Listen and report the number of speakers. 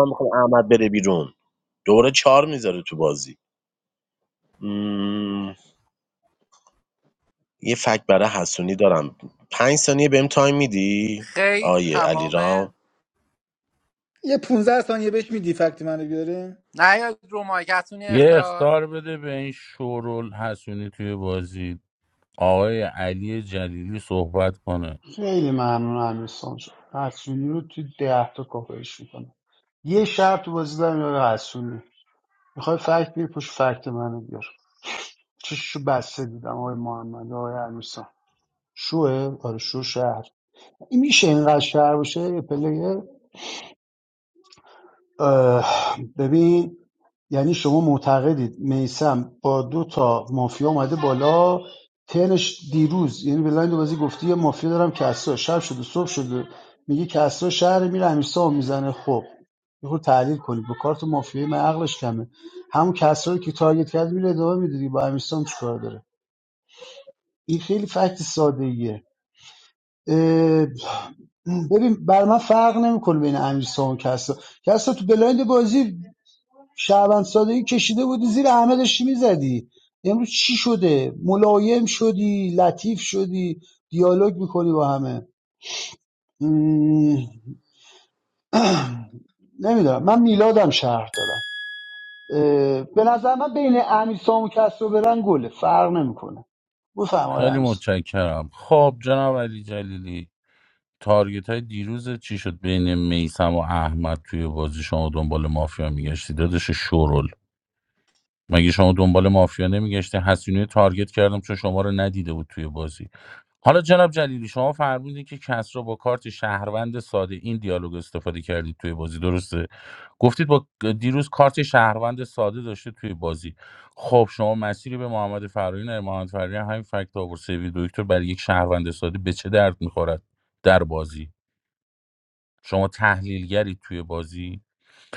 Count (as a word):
five